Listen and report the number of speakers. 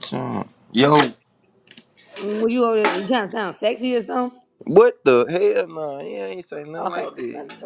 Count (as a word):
two